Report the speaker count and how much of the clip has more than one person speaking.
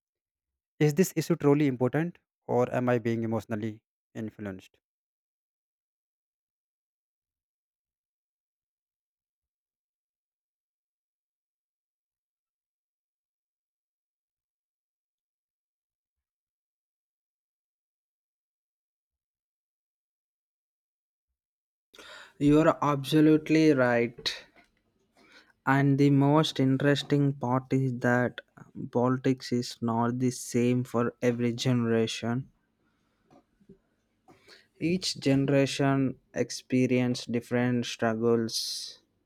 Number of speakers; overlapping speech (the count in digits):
2, no overlap